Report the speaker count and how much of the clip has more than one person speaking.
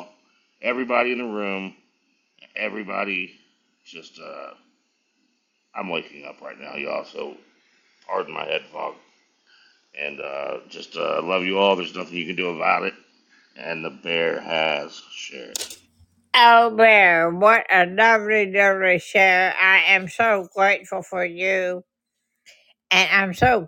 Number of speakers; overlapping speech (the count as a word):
two, no overlap